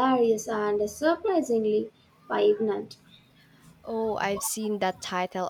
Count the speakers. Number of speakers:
two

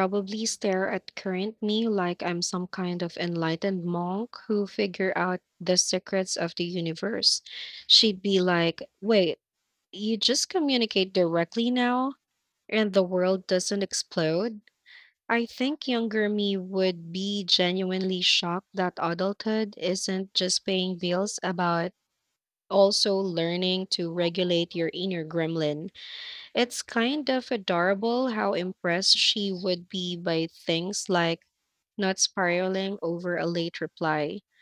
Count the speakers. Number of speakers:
one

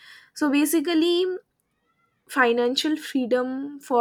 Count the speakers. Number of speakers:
one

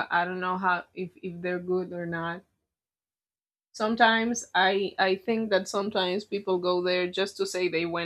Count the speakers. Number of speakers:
one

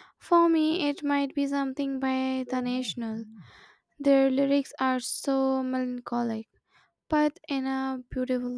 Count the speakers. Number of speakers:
one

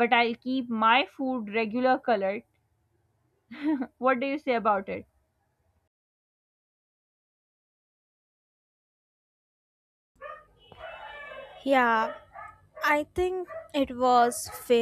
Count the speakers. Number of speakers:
two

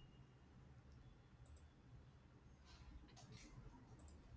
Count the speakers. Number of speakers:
zero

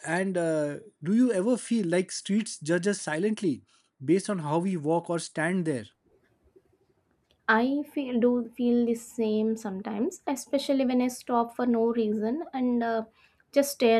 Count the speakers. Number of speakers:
two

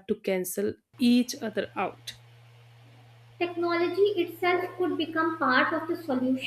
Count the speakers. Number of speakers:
two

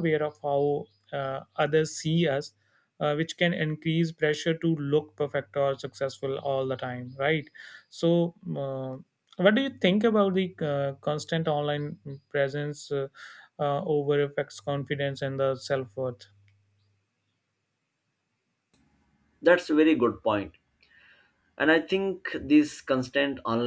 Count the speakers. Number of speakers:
two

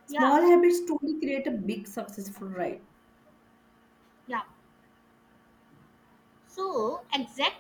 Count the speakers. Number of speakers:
two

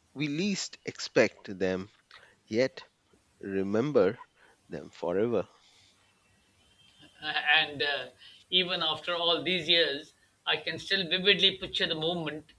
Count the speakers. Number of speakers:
two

